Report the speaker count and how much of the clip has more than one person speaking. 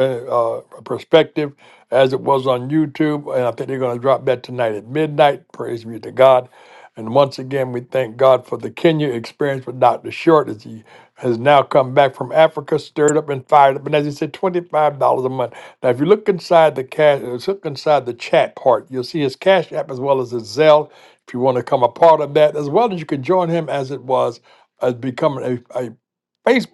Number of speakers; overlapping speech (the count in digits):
1, no overlap